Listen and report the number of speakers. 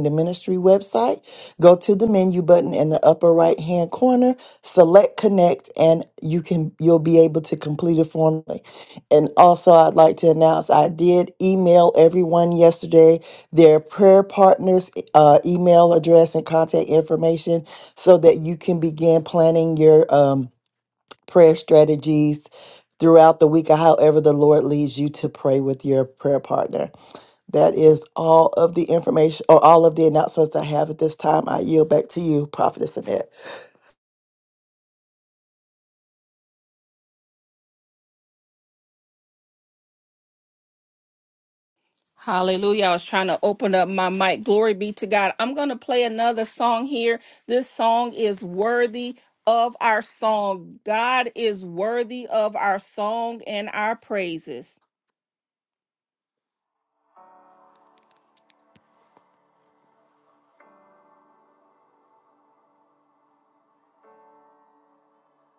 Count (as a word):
two